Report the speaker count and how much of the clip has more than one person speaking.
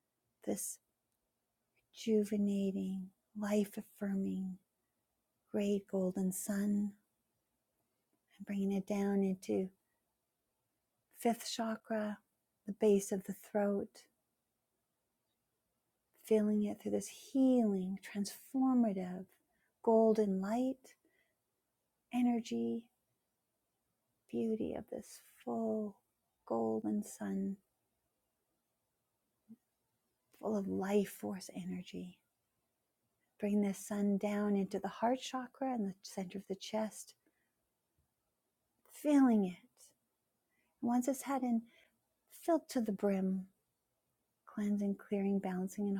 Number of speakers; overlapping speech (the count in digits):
1, no overlap